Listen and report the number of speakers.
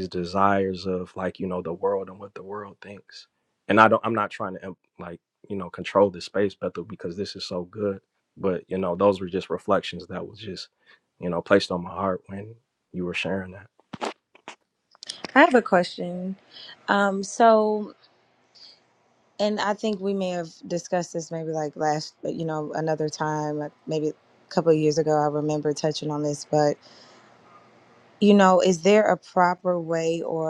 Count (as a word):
two